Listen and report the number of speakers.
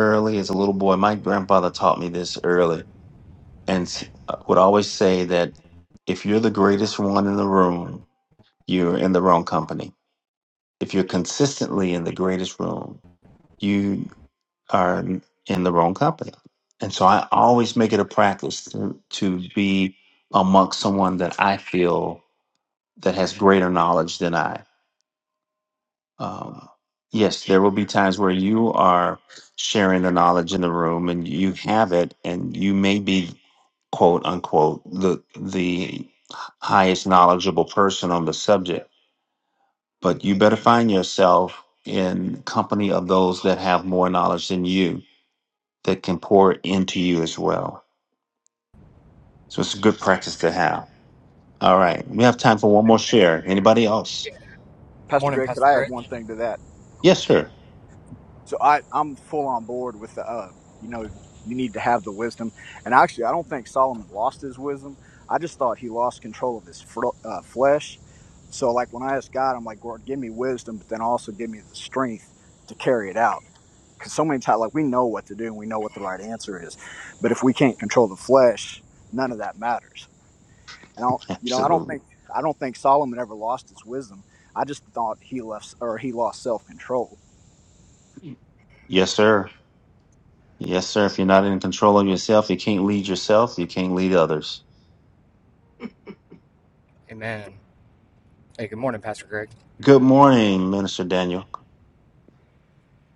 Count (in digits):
3